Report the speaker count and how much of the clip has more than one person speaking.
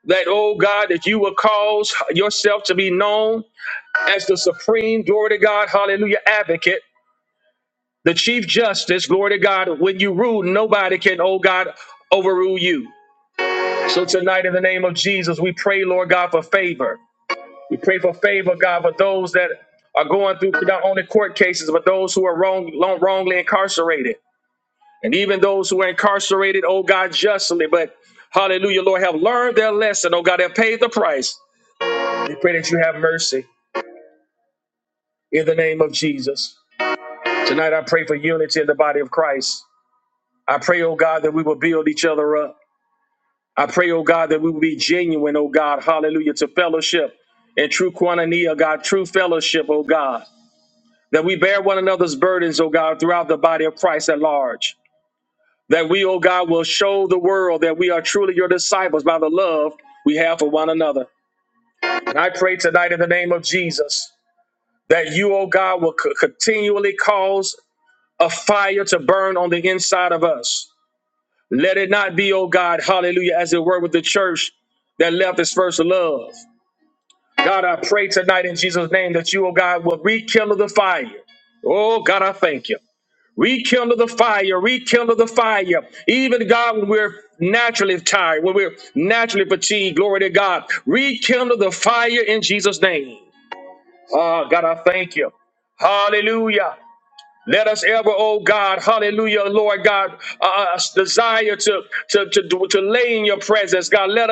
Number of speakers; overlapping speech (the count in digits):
1, no overlap